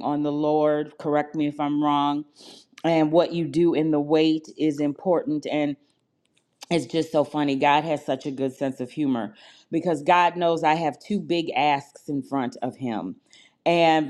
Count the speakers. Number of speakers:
one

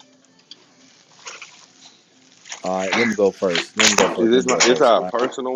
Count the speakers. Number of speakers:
two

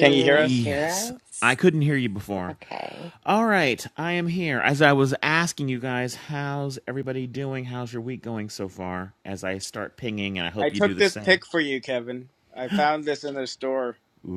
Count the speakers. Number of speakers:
three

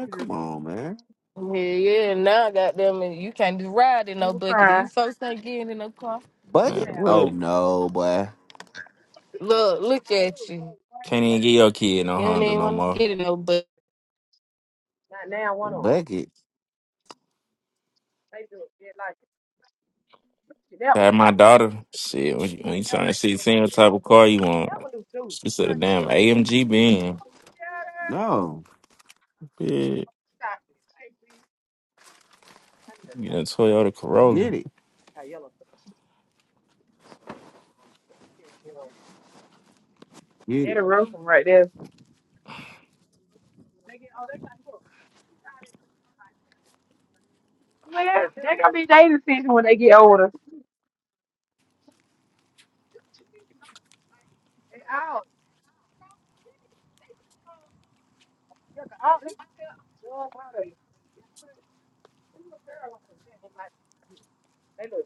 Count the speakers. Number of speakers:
four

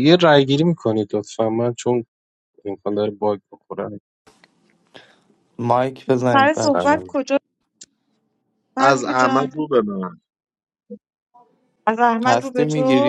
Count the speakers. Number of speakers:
four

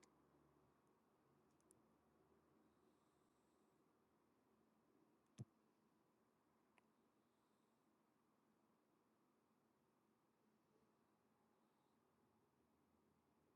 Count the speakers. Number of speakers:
zero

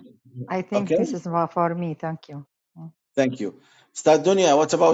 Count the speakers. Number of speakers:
two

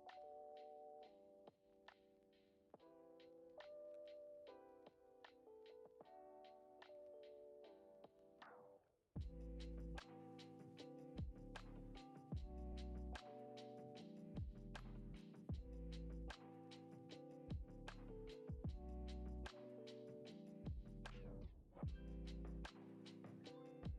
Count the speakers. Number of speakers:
zero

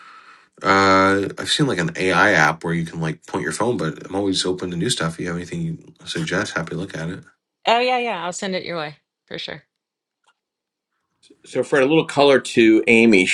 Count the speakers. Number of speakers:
three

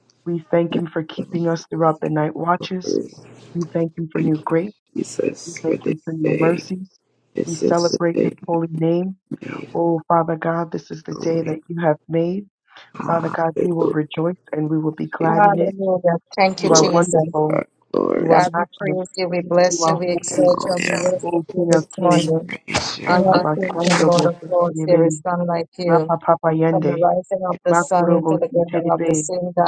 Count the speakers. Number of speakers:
three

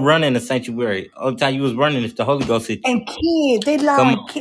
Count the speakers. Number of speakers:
two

